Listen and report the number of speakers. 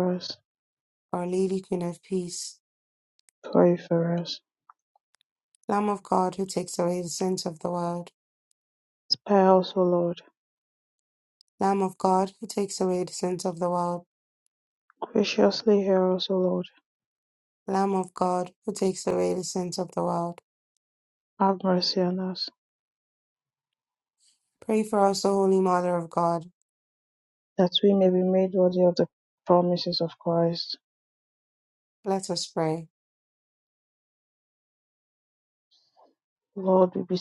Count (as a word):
two